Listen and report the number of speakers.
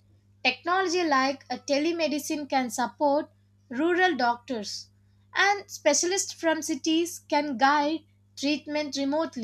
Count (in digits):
1